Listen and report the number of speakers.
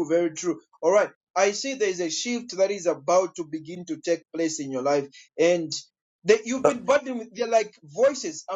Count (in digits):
1